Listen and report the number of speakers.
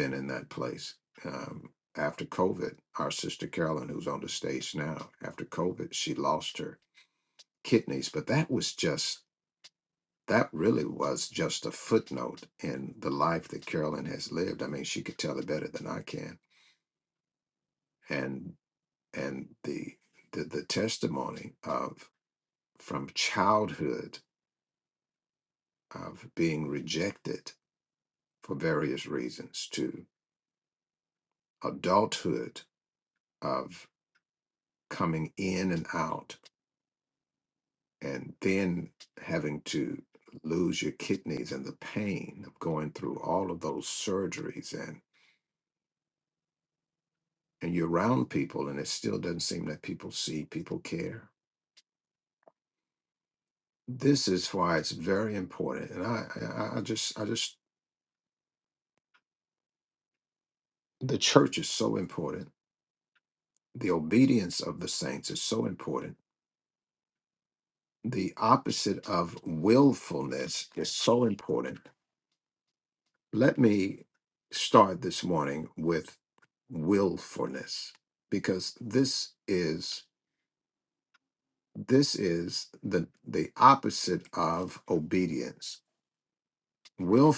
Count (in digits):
1